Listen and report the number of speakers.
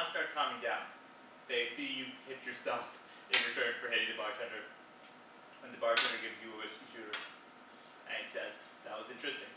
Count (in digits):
1